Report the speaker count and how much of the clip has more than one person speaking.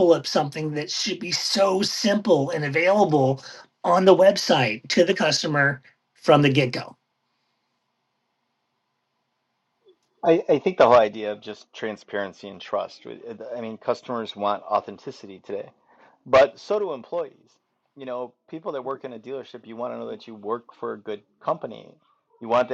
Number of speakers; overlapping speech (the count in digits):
2, no overlap